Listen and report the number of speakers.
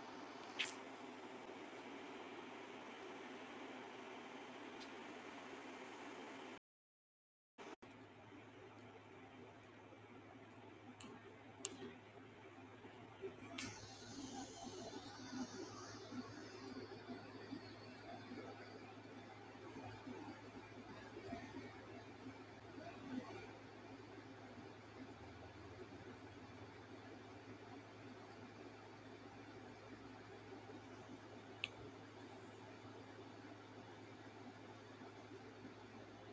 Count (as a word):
zero